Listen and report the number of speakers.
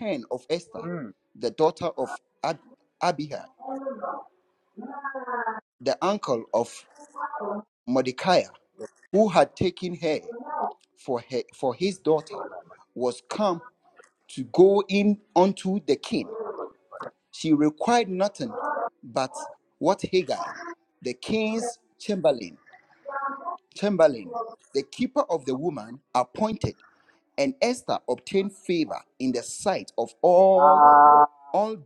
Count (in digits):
2